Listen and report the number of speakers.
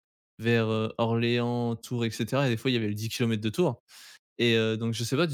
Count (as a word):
one